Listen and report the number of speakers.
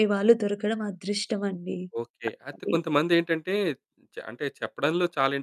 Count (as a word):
two